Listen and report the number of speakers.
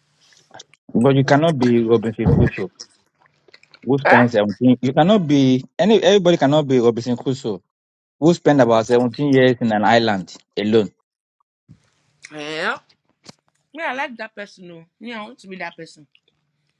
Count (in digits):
2